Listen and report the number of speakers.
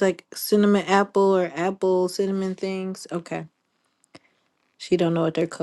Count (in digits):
1